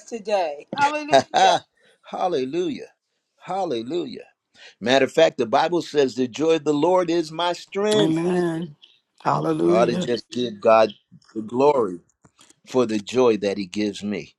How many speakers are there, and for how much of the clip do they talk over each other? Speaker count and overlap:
three, about 4%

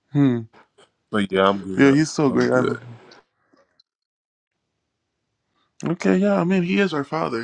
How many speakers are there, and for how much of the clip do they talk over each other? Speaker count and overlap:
two, about 13%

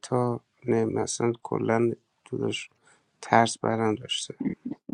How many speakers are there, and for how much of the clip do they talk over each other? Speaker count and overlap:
one, no overlap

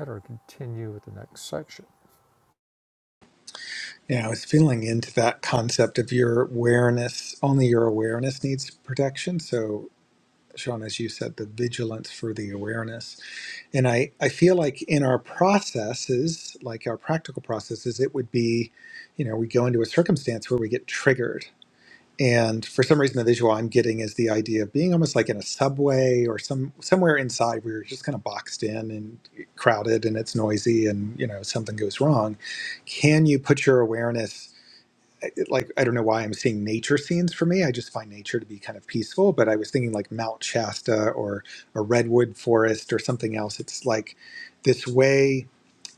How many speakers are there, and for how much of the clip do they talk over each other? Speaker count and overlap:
two, no overlap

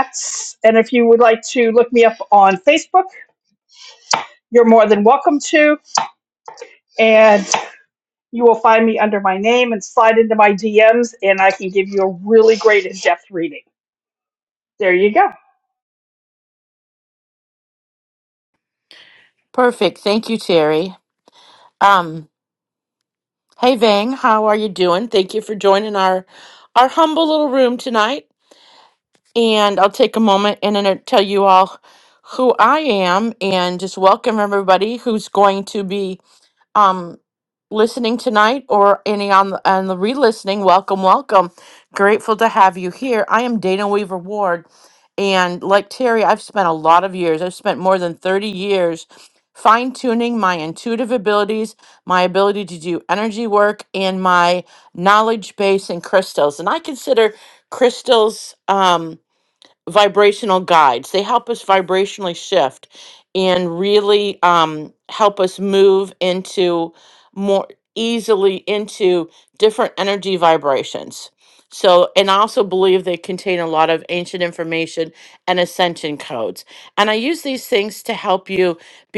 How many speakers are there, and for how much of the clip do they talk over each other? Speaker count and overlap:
two, no overlap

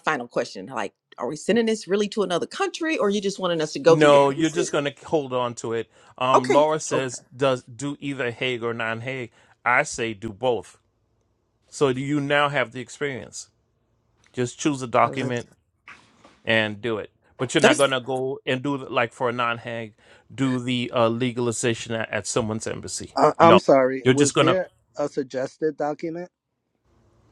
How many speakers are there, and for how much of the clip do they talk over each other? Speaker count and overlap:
three, about 10%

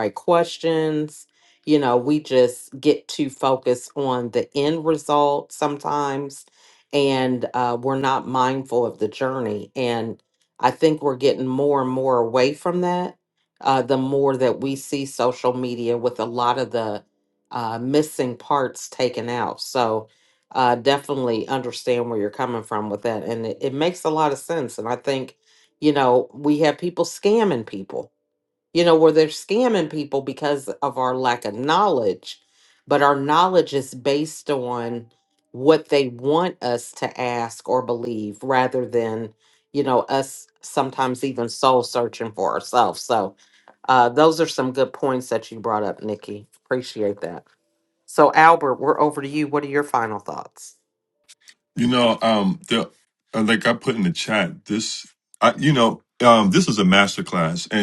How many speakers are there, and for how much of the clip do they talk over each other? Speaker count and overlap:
two, no overlap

